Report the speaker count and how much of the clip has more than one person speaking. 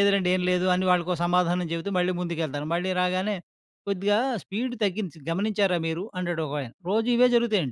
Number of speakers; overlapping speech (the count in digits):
1, no overlap